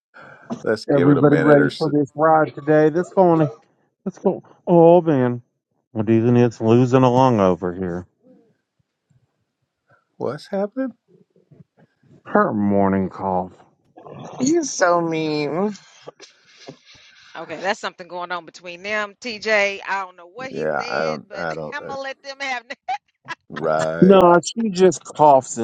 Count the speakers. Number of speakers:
four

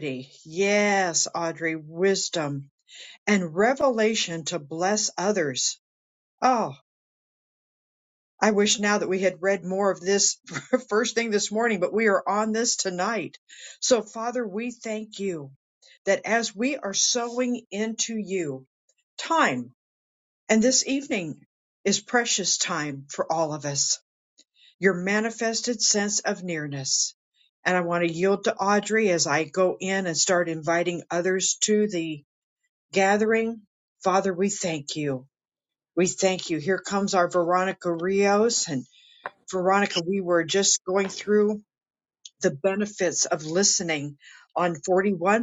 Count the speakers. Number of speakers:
one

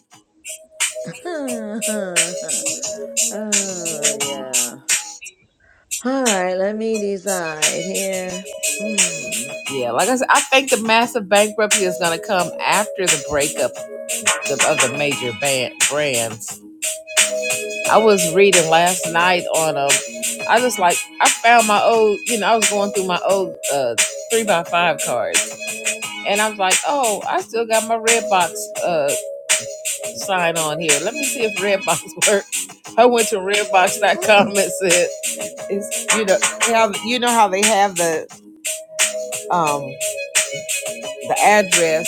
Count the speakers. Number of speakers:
two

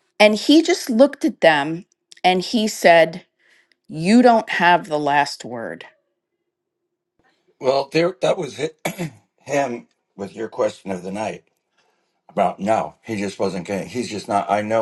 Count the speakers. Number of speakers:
two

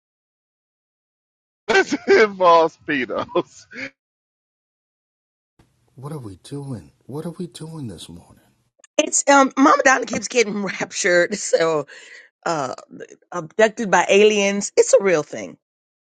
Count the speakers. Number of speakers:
three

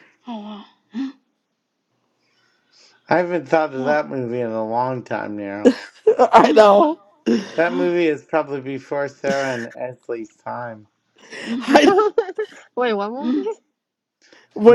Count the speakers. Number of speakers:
four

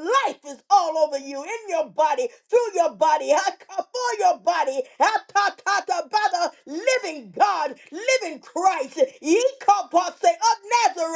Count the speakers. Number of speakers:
one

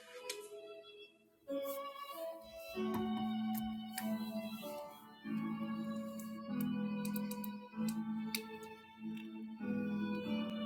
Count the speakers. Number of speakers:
zero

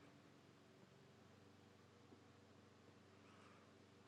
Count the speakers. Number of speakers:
zero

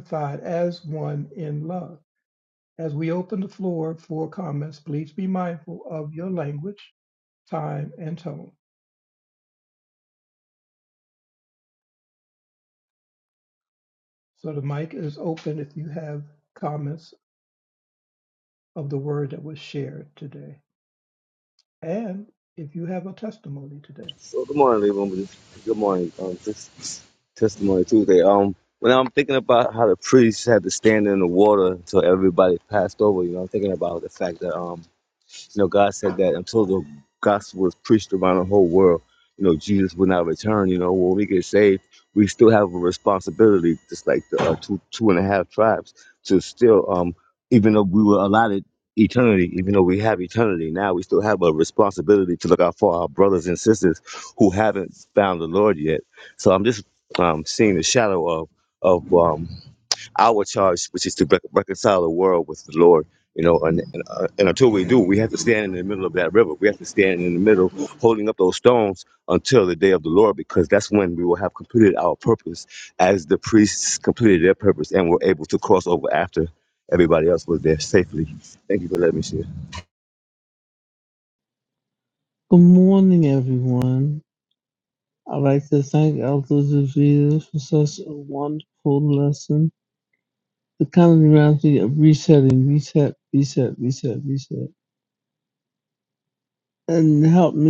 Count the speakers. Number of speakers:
three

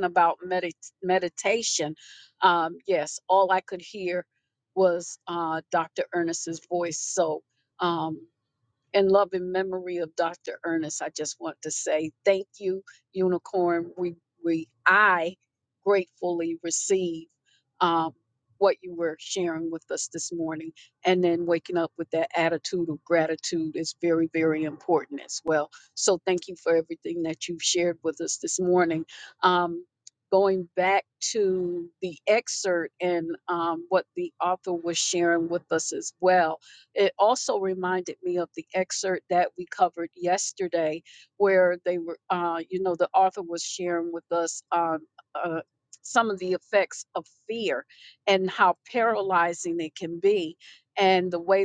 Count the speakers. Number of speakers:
one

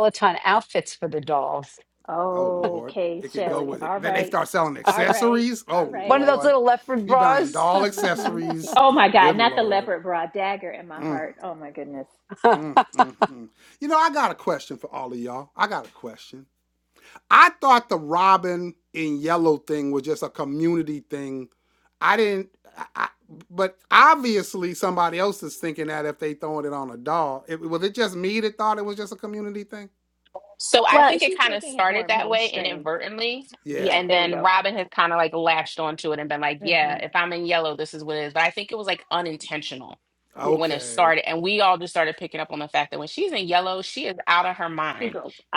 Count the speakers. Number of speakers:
four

